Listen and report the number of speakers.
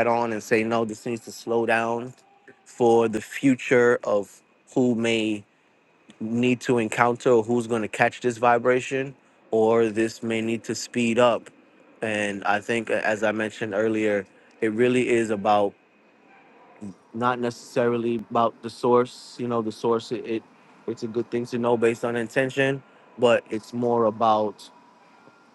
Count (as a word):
one